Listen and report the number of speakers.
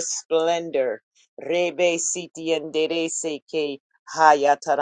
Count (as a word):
one